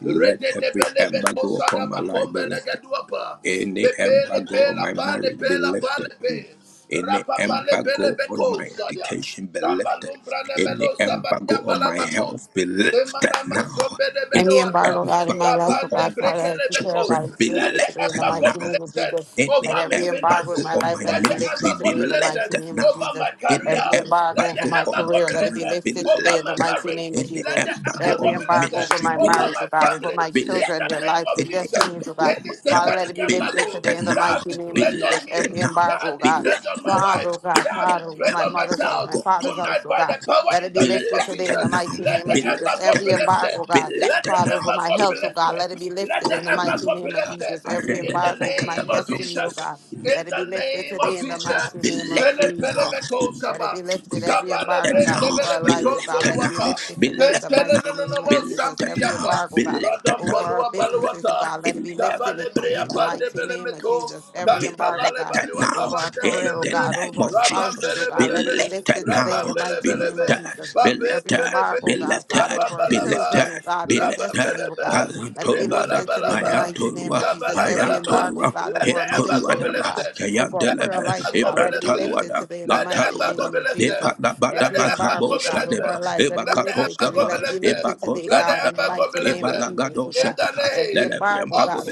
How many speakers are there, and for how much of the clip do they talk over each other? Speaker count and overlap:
three, about 88%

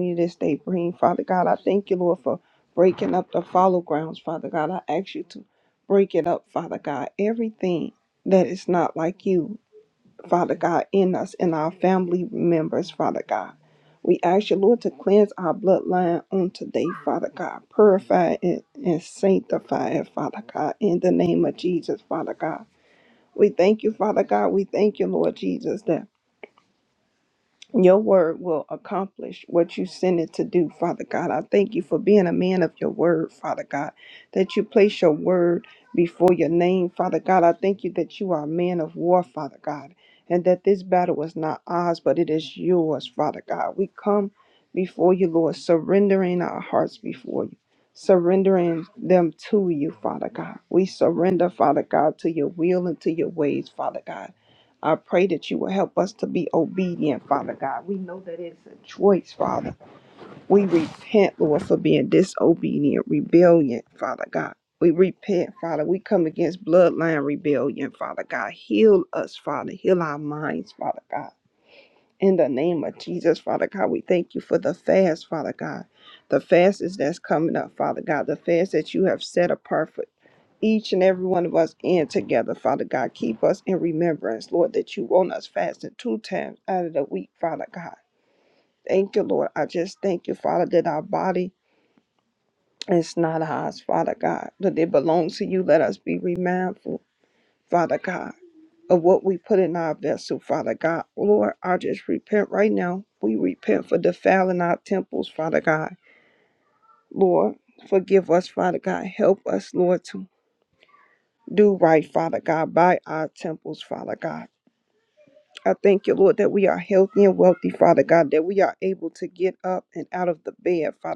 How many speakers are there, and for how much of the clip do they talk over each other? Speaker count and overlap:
one, no overlap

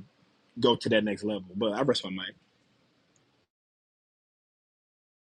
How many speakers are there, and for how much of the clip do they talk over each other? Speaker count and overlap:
one, no overlap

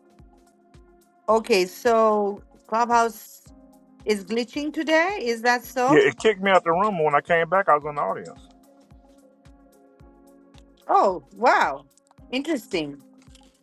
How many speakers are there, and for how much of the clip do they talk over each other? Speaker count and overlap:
two, about 2%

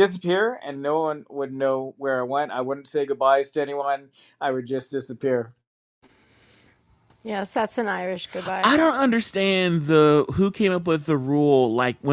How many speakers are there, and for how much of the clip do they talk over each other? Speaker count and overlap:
three, under 1%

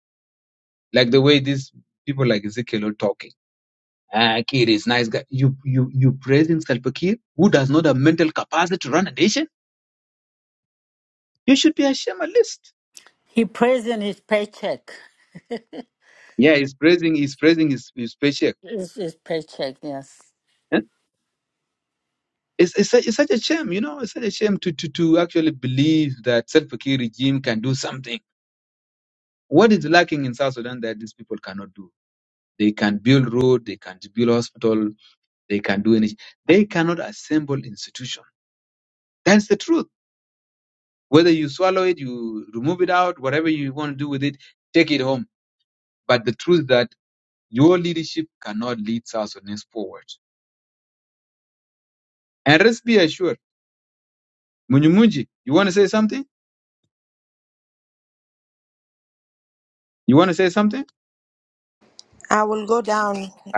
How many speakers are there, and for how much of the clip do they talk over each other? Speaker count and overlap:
three, no overlap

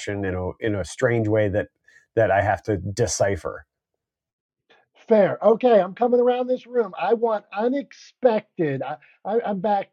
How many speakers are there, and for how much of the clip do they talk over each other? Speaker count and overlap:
two, no overlap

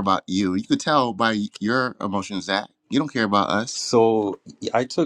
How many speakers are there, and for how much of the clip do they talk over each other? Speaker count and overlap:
two, no overlap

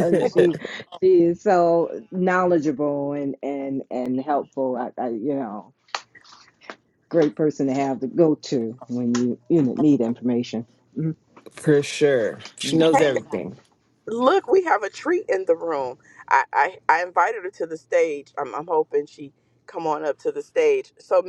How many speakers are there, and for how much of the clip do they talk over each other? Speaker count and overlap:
three, no overlap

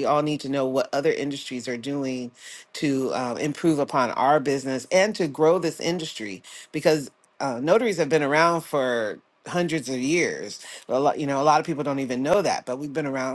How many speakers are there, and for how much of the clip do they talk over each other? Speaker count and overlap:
one, no overlap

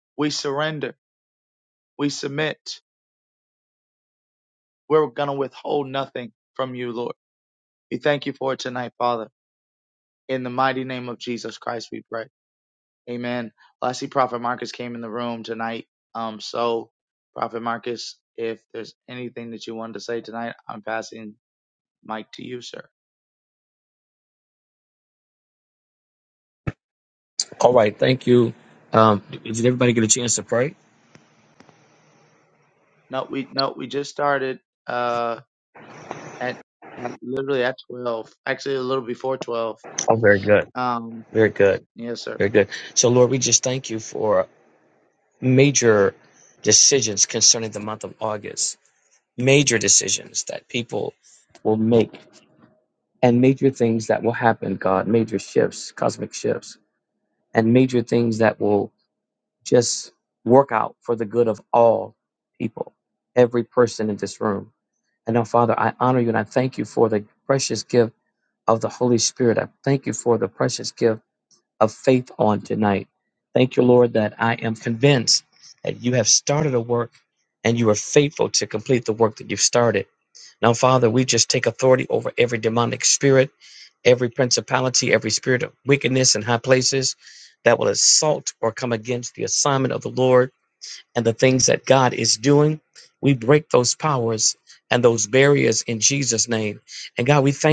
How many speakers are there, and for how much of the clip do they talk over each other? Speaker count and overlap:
two, no overlap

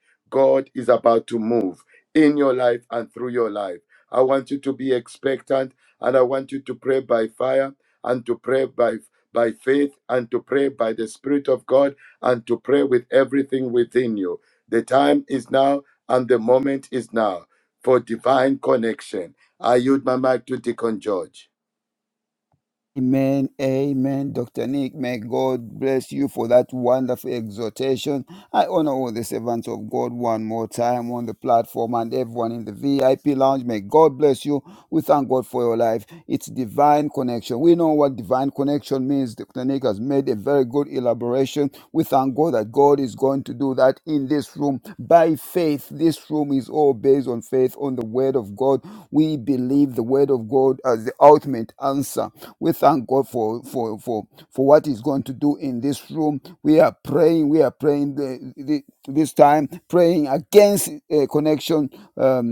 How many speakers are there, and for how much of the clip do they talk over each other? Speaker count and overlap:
two, no overlap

